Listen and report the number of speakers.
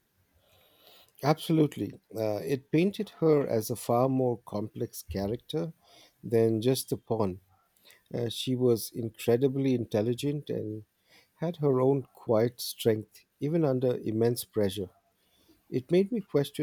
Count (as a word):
one